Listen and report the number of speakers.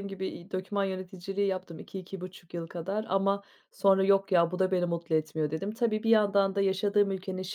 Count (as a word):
one